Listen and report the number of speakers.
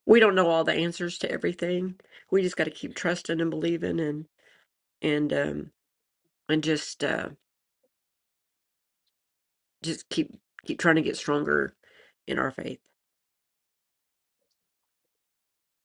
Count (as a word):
one